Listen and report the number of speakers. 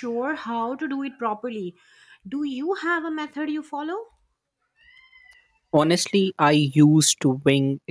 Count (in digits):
2